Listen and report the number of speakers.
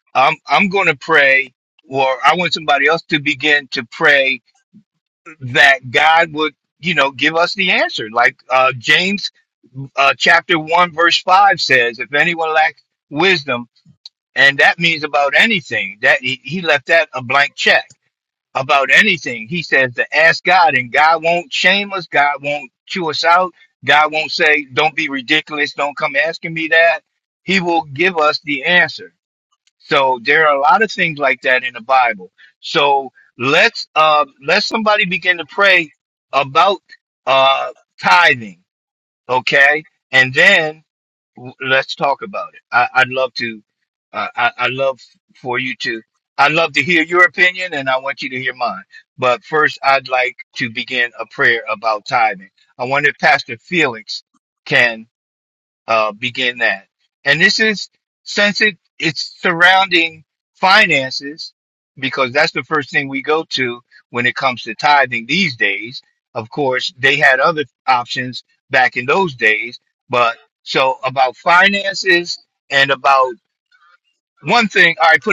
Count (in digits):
1